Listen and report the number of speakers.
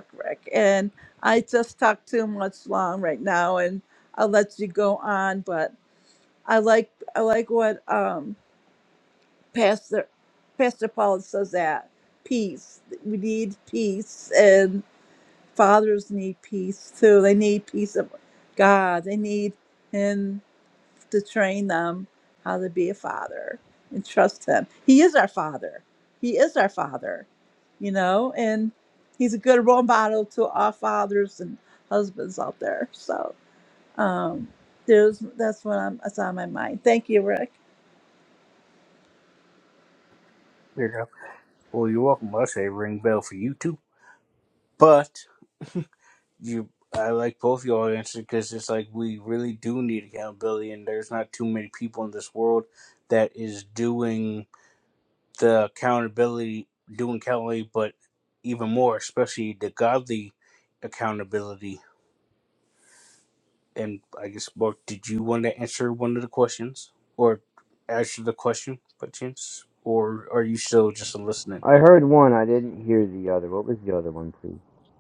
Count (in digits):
3